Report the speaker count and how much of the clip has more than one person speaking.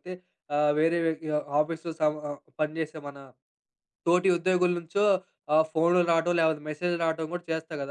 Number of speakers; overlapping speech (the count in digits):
1, no overlap